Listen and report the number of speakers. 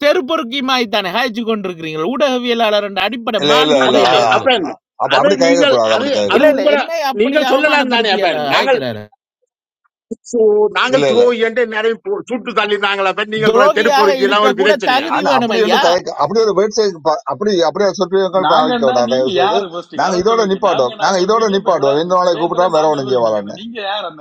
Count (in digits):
4